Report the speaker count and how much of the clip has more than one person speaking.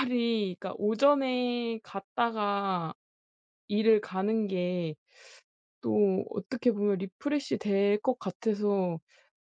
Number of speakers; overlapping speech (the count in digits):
1, no overlap